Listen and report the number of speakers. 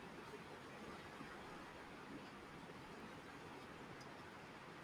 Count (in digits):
0